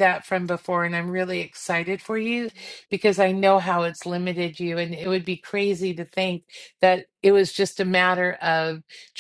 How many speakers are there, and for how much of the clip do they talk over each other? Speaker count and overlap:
1, no overlap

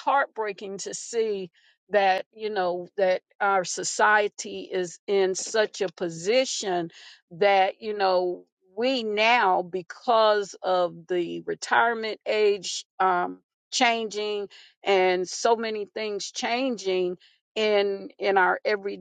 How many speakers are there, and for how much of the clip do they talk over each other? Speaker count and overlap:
1, no overlap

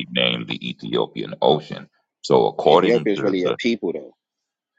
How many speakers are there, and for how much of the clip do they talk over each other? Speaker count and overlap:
2, about 20%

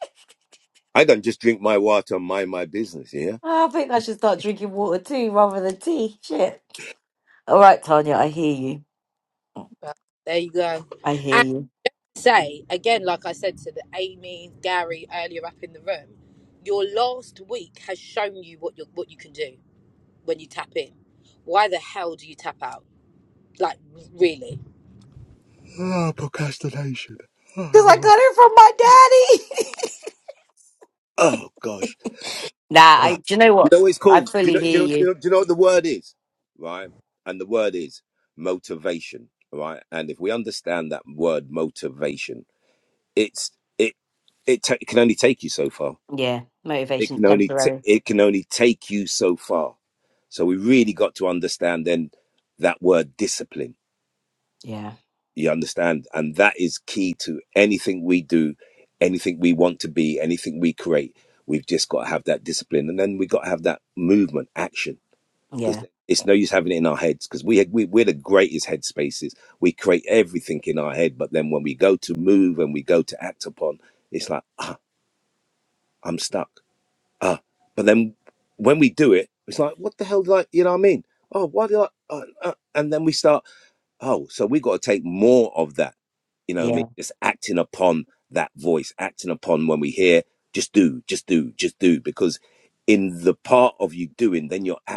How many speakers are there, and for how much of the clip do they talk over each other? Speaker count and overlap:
3, about 3%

